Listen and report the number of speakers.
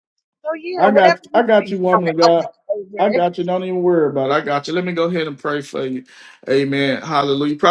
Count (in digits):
2